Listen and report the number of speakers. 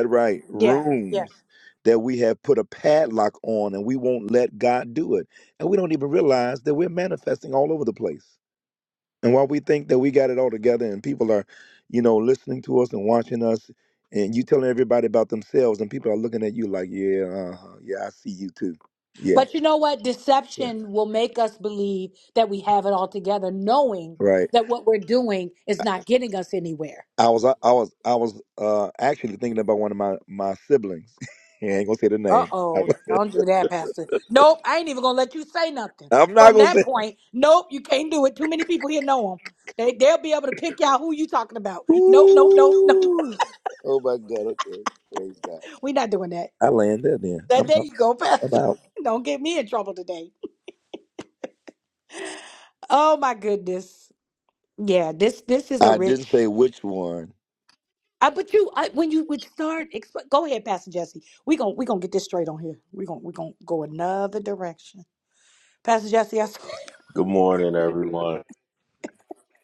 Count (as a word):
three